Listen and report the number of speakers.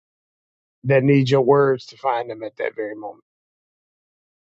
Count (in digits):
1